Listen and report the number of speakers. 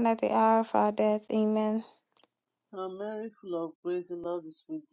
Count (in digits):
2